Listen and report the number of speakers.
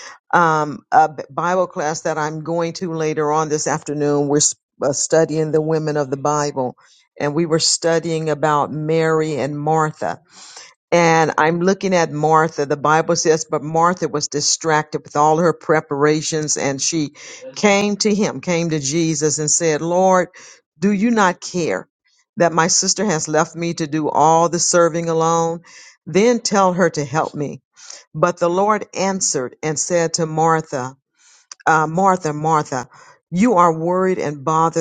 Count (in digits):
1